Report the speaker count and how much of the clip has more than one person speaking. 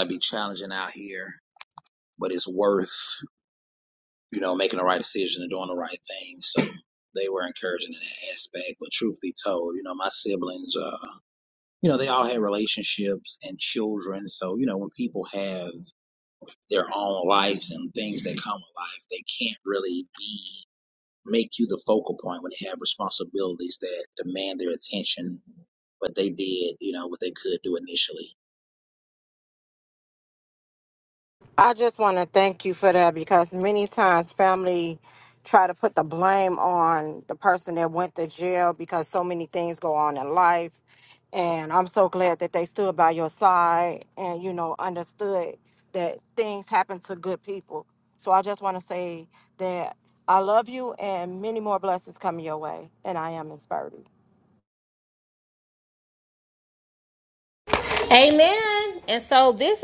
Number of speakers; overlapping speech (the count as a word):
three, no overlap